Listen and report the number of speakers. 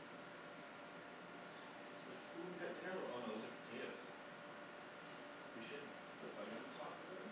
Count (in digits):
1